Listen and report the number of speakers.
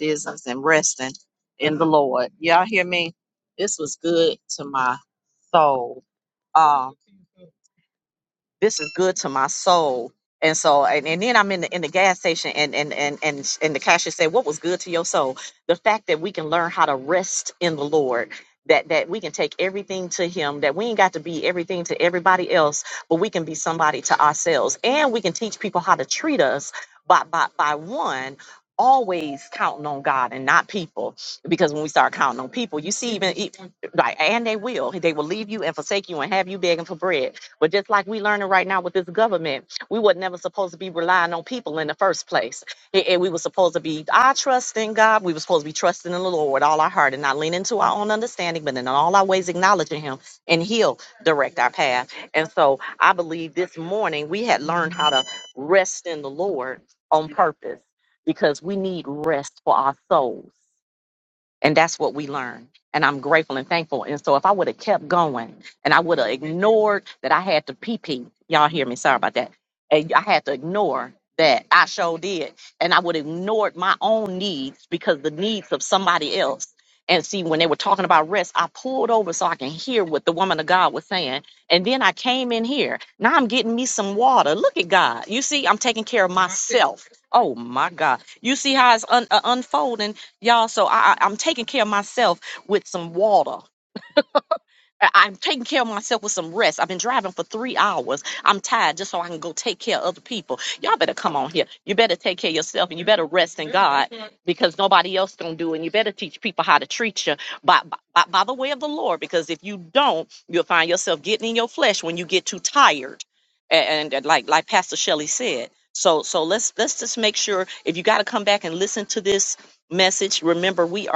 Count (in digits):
1